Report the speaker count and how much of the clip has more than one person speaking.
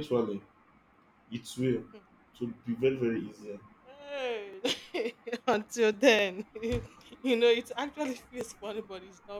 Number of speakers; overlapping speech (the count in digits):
2, no overlap